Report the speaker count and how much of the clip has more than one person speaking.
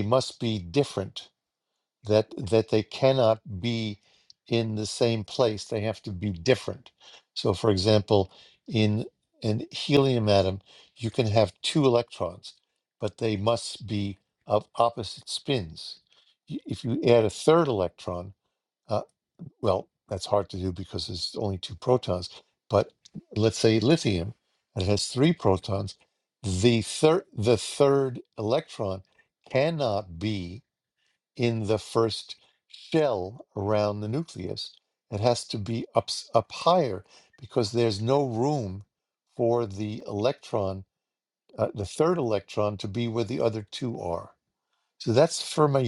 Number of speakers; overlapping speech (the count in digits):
1, no overlap